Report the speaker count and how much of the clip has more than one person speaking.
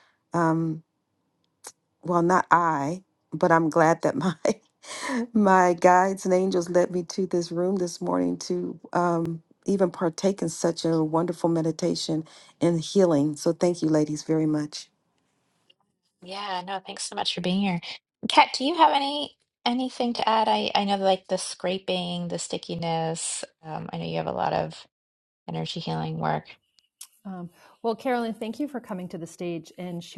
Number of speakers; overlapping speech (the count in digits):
3, no overlap